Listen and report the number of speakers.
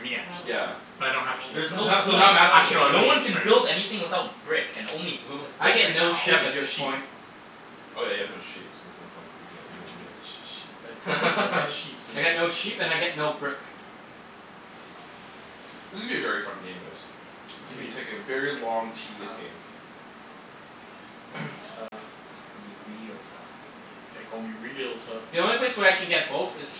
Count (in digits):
4